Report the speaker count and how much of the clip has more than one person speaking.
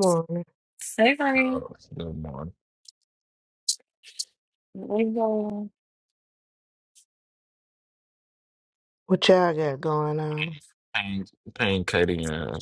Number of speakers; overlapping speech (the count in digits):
3, about 2%